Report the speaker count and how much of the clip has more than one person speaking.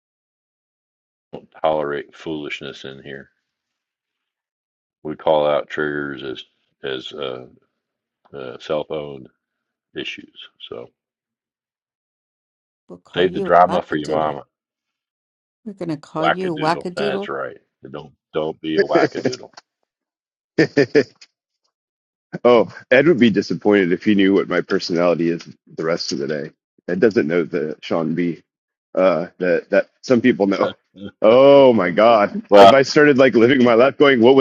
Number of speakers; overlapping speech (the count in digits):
3, about 7%